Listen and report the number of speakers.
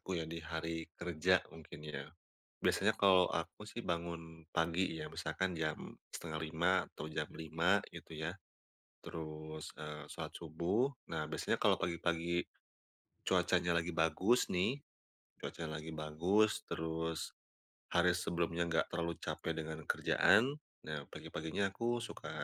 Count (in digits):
1